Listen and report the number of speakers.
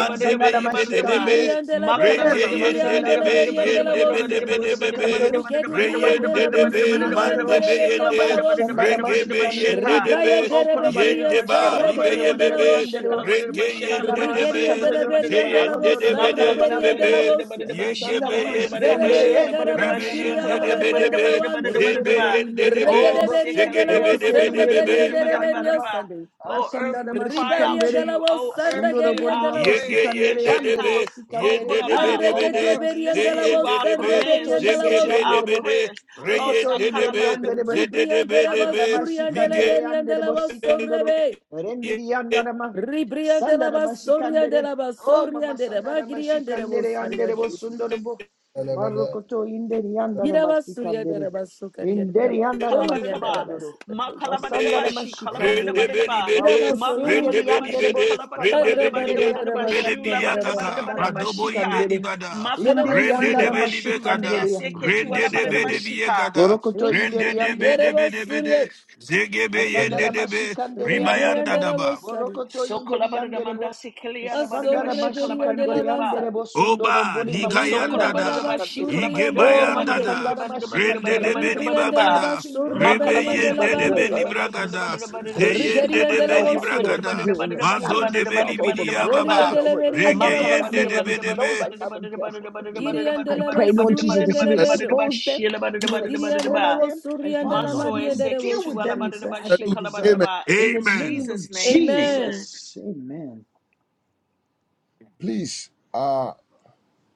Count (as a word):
five